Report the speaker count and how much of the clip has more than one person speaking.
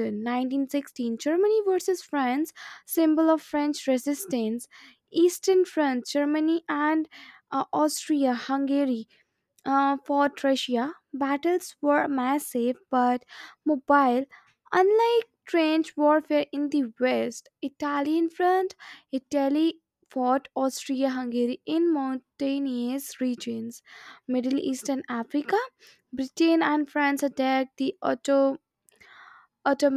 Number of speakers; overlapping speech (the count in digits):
1, no overlap